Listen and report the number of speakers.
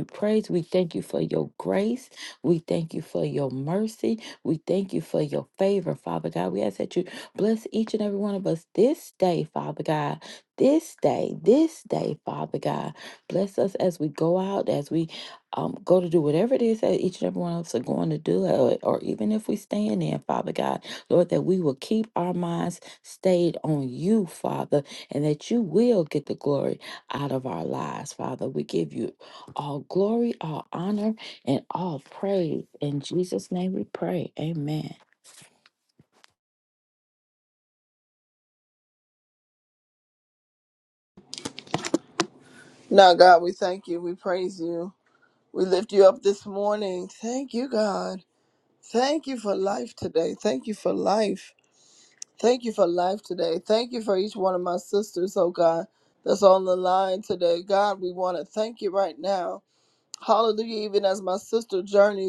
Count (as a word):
two